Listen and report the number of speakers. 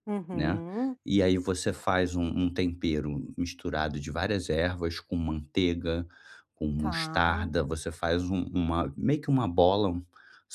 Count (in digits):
2